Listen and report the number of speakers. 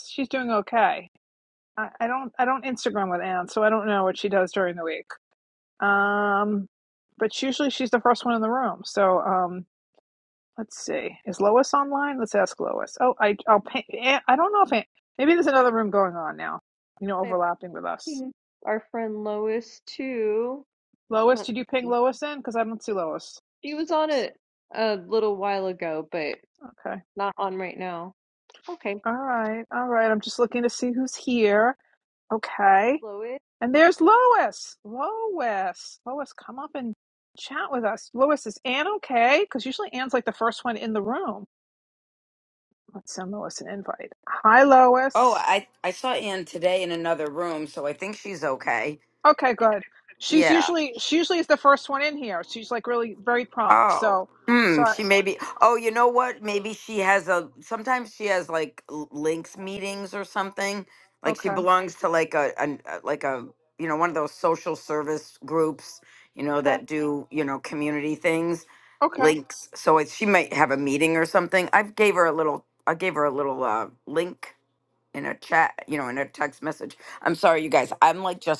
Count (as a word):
three